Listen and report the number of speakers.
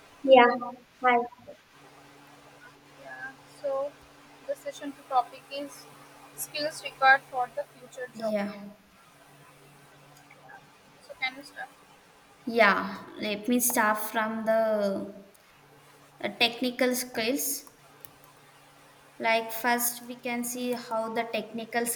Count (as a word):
two